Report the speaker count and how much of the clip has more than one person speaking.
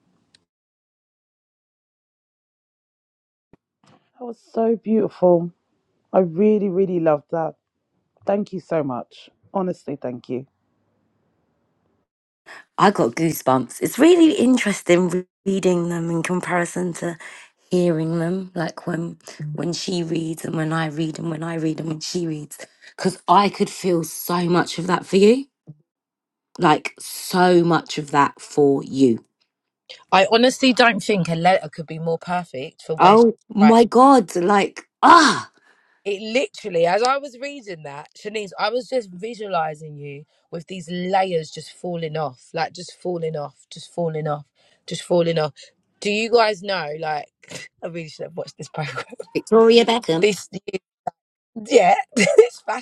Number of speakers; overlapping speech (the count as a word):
three, about 1%